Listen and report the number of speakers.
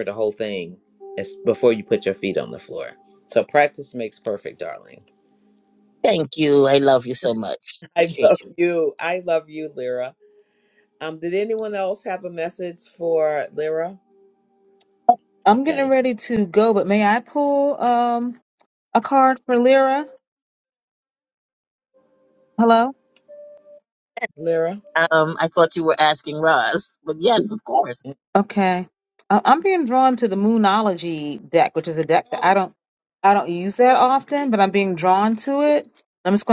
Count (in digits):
3